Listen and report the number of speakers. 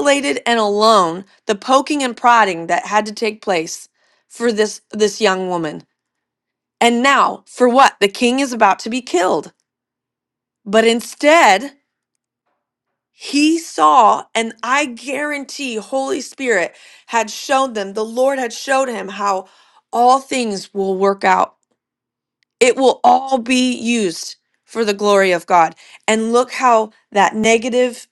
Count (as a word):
one